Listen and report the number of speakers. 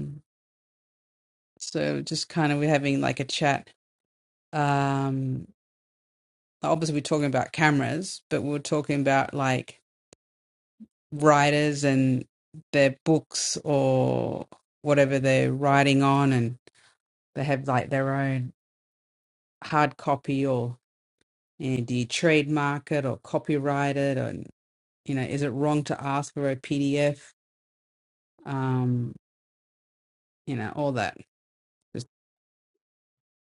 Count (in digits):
1